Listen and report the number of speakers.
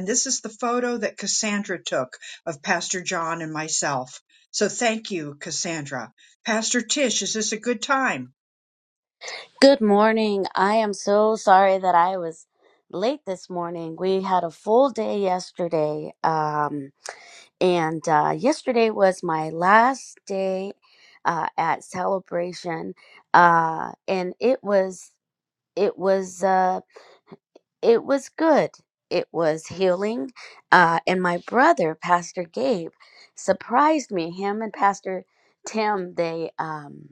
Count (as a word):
two